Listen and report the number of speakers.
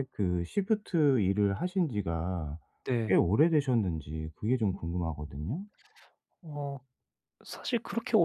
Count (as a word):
two